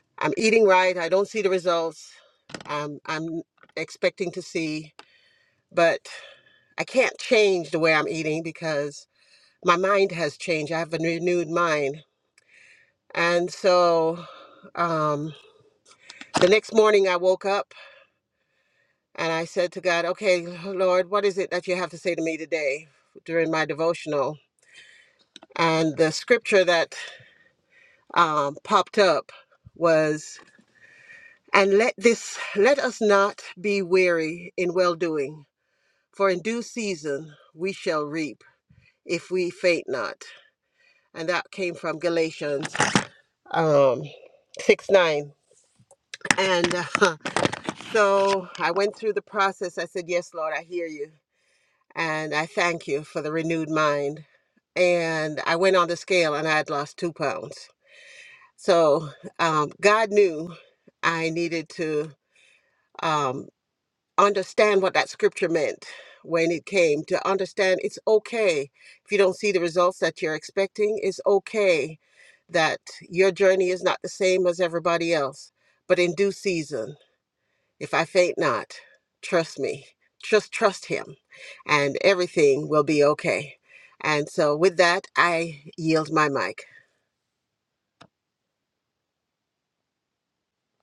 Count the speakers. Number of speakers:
1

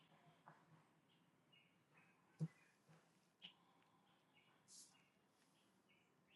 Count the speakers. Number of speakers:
0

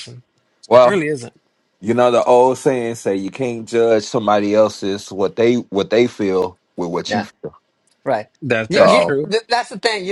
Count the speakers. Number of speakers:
3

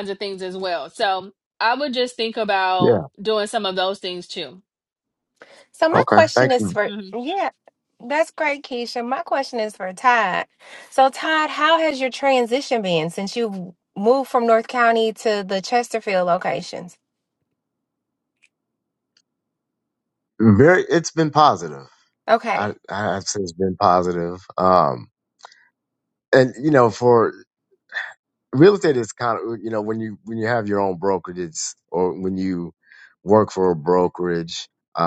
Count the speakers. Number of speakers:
3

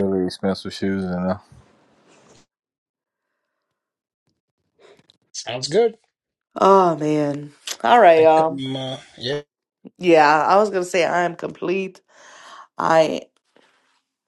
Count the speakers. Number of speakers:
3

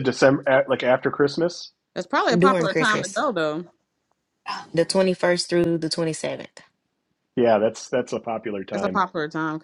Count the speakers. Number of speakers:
3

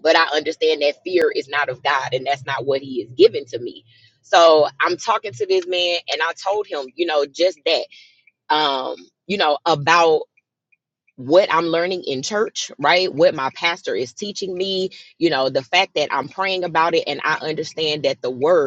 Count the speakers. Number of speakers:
1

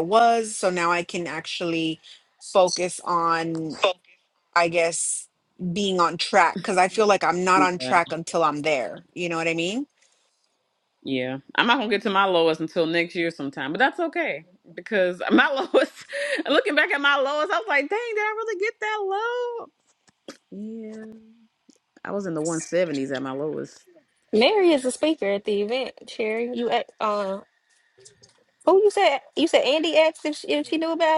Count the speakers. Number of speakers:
3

